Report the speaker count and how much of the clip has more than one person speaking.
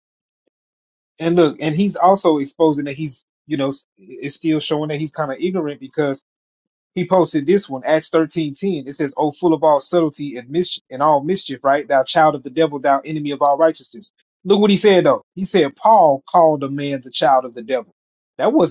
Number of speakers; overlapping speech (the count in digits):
1, no overlap